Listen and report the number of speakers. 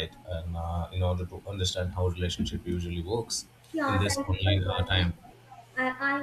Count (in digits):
2